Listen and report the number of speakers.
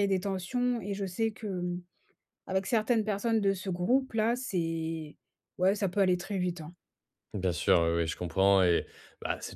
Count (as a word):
two